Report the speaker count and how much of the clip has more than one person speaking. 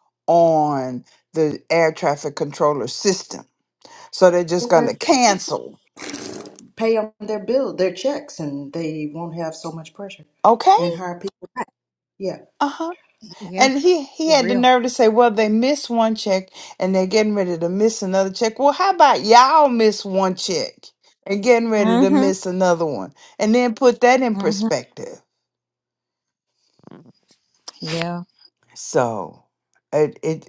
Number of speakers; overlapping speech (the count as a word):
three, about 6%